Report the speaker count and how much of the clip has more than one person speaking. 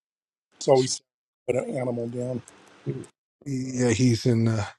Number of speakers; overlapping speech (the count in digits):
2, no overlap